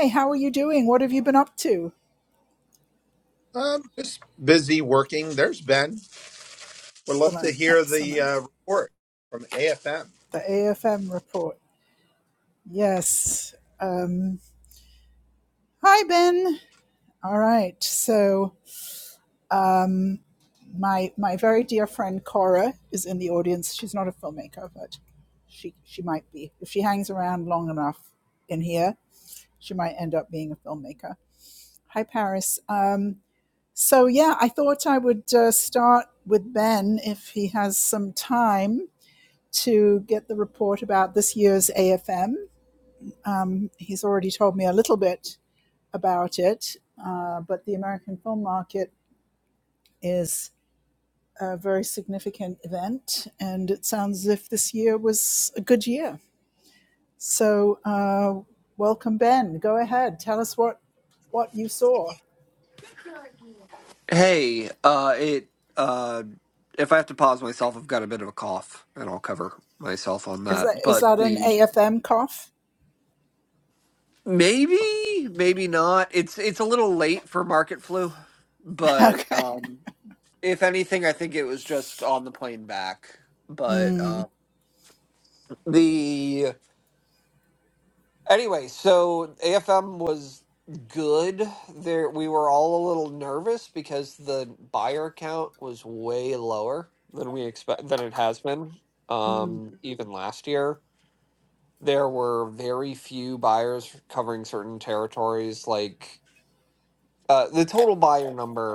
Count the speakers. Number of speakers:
3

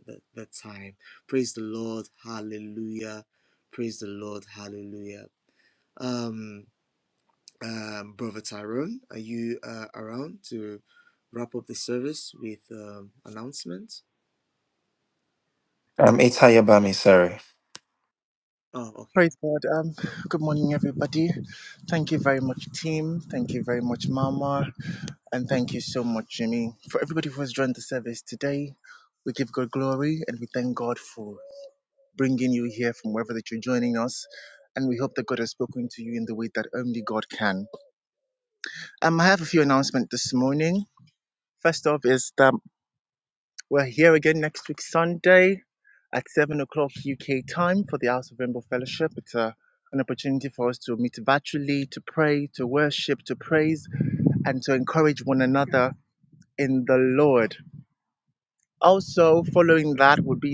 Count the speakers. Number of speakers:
3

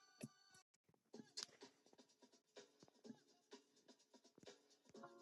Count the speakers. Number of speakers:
0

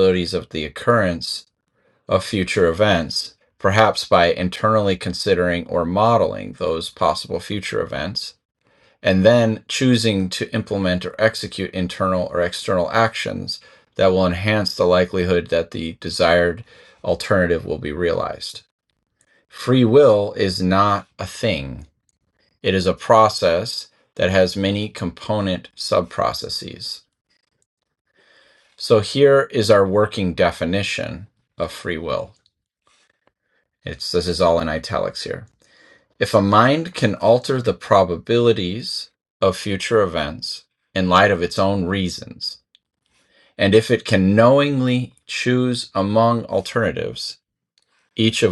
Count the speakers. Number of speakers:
1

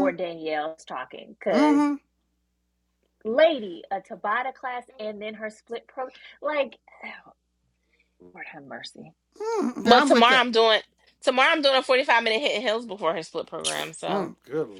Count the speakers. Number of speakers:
3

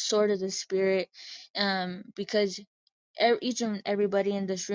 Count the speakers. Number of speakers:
1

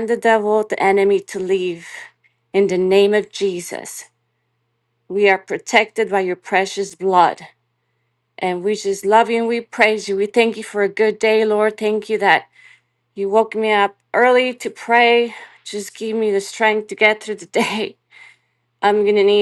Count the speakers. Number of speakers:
1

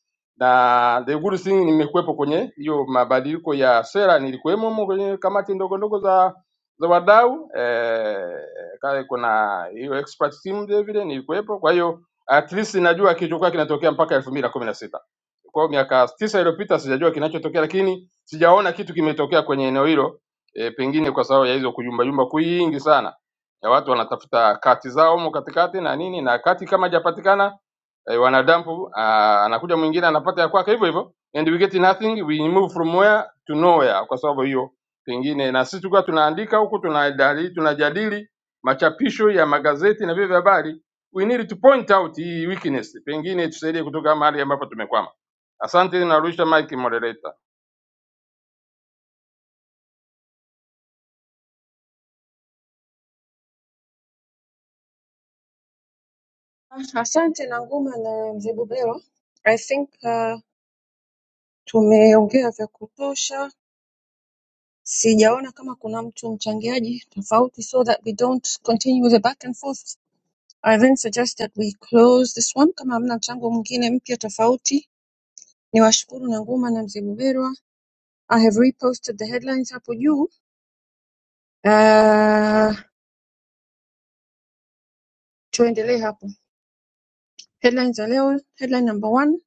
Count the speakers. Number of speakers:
2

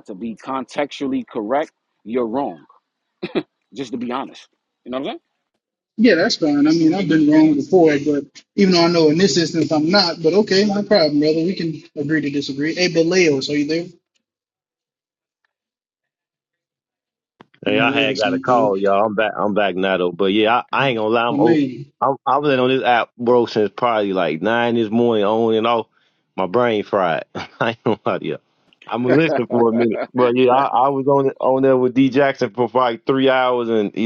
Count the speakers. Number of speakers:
3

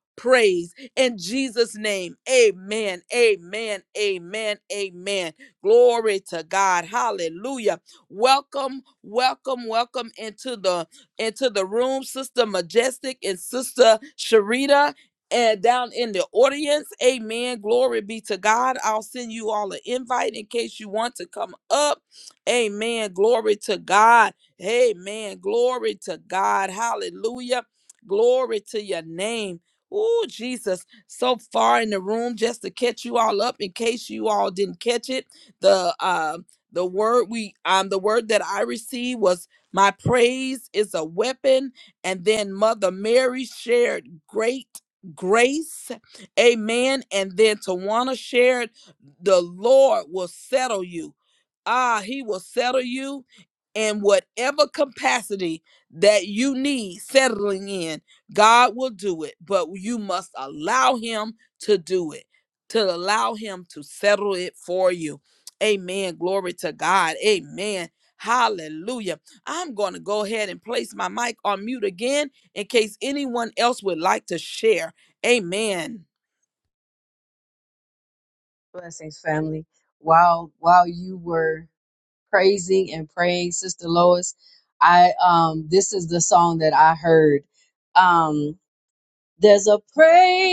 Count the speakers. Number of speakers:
2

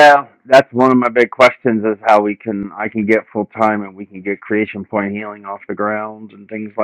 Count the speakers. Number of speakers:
1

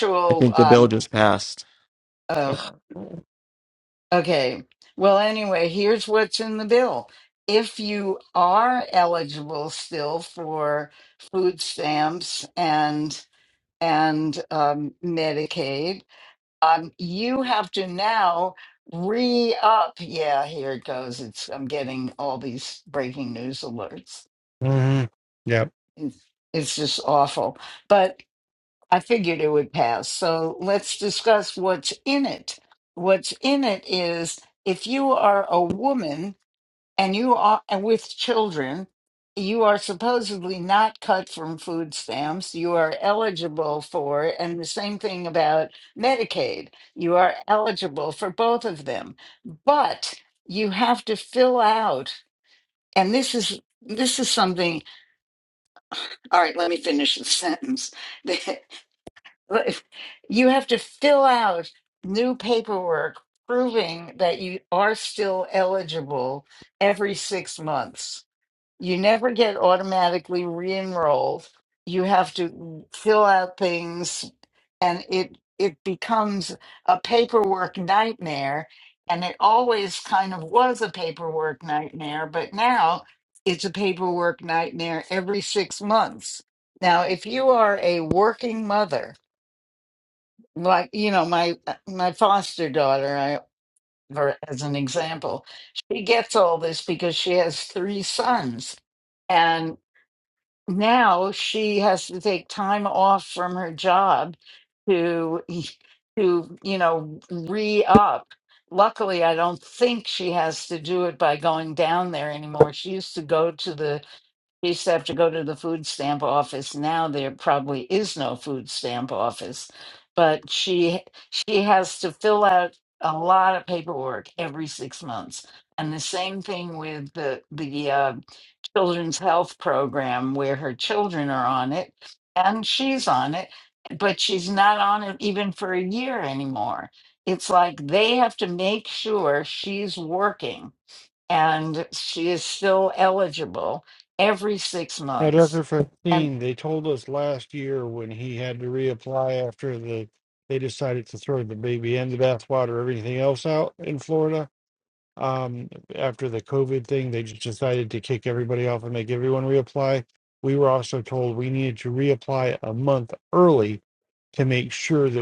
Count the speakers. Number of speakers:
3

